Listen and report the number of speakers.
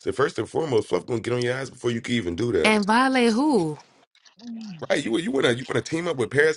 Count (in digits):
2